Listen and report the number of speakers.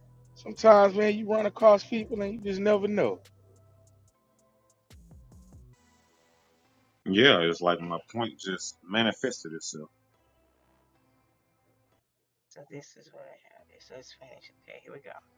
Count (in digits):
3